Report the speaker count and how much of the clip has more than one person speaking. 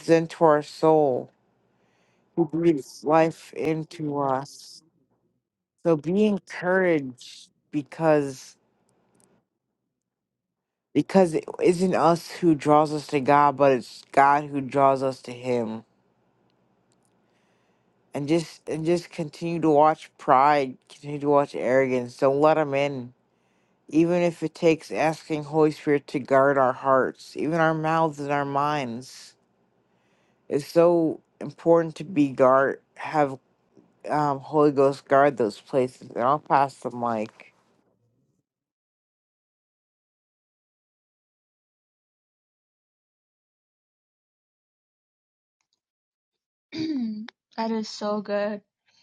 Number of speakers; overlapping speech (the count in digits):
2, no overlap